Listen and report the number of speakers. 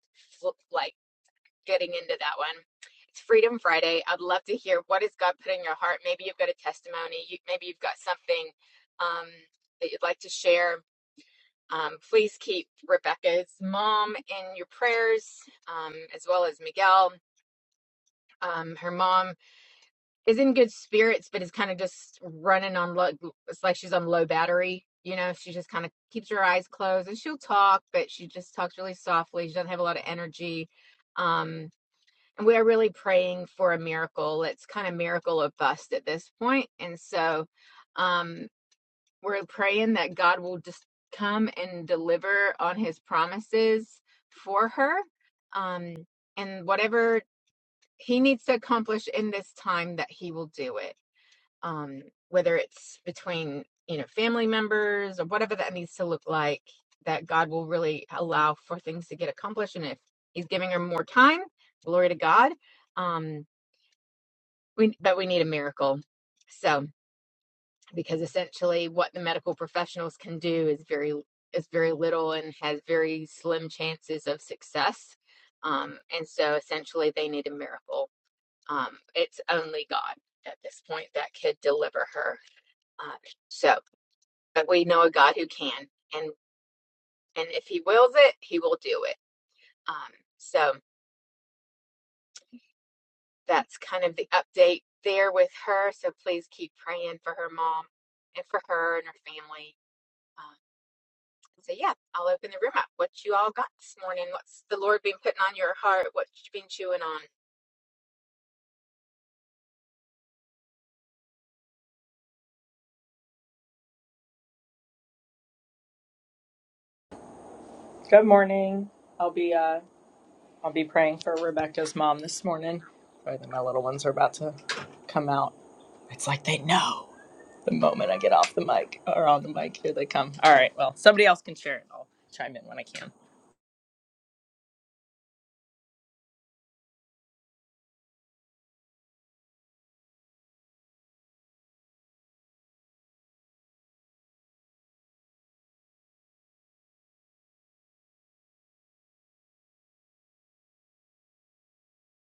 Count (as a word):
two